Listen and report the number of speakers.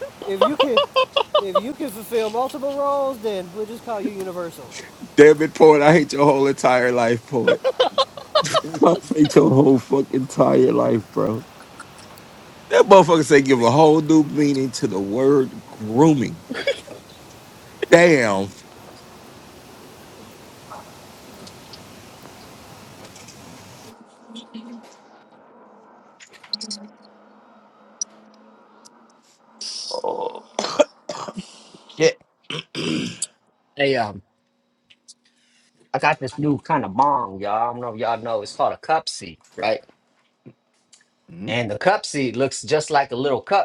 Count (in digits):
3